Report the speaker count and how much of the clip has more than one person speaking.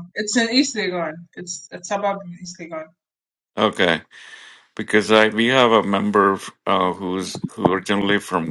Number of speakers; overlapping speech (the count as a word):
two, no overlap